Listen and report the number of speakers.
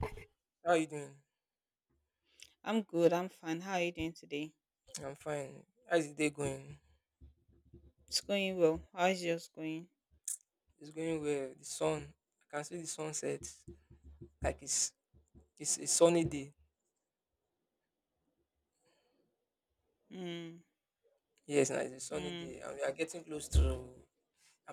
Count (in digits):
2